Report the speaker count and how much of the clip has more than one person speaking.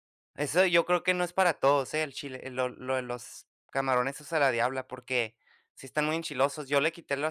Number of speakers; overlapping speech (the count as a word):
one, no overlap